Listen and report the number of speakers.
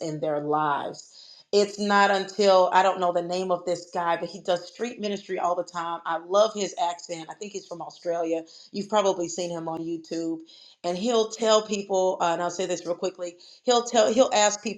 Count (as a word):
one